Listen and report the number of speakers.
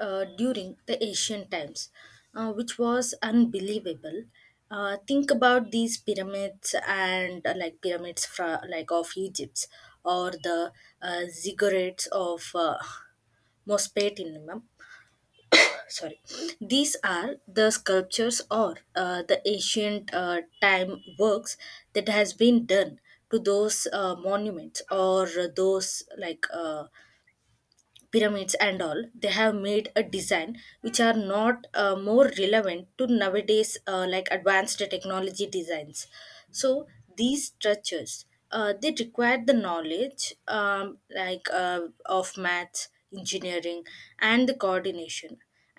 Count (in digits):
1